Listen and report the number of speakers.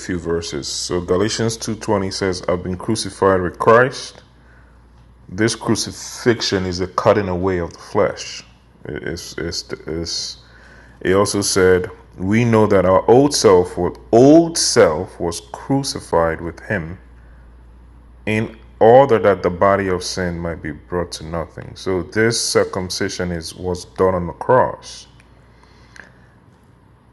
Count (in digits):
1